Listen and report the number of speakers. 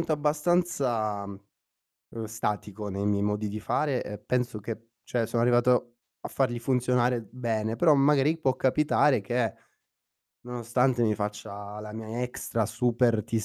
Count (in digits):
1